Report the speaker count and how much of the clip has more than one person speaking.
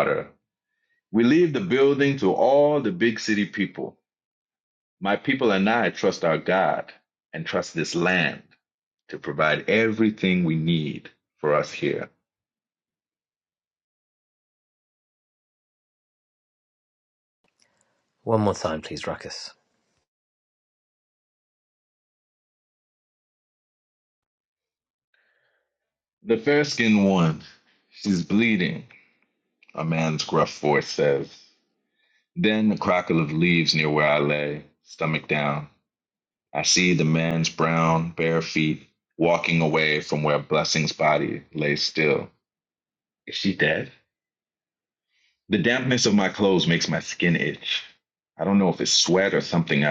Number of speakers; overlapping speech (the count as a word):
two, no overlap